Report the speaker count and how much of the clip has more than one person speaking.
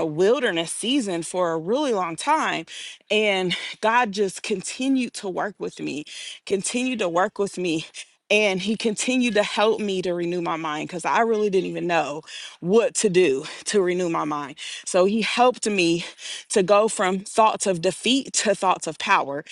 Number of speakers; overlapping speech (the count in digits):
1, no overlap